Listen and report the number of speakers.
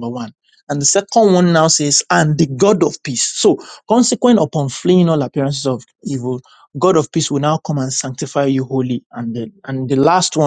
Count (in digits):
1